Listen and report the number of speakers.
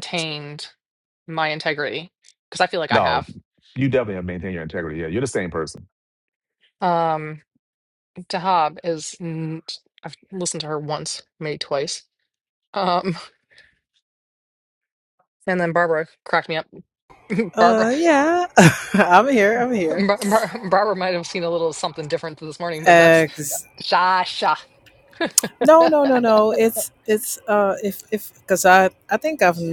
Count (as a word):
three